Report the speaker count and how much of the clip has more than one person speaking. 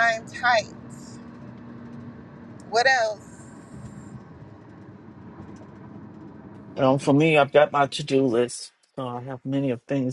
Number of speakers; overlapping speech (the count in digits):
2, no overlap